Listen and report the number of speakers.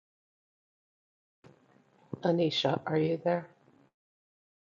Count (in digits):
1